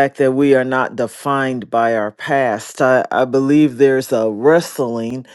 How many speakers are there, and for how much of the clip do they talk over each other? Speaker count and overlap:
one, no overlap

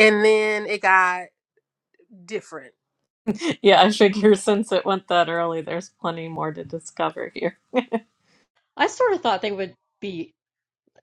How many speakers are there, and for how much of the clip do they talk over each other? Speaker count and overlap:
three, no overlap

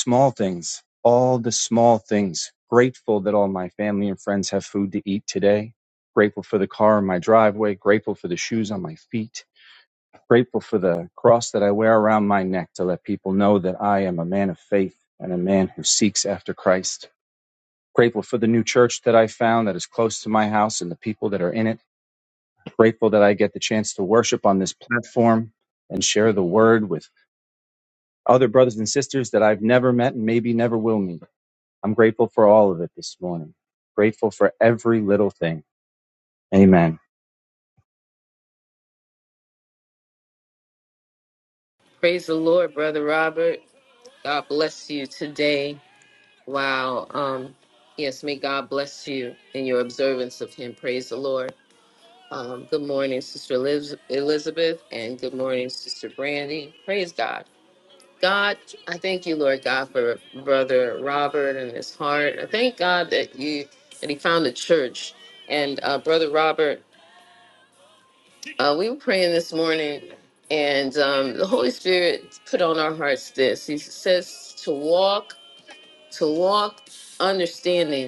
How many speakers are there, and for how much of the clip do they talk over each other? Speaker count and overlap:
two, no overlap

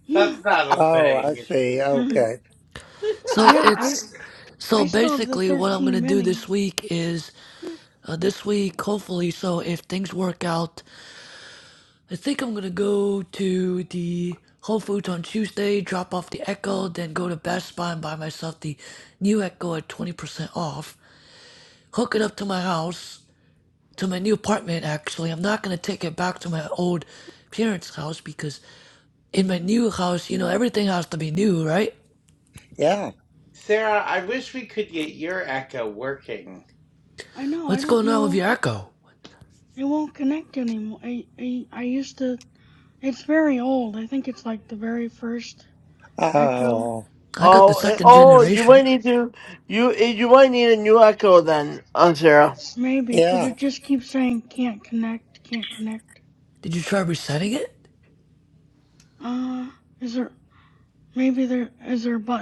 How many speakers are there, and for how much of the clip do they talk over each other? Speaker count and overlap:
five, about 10%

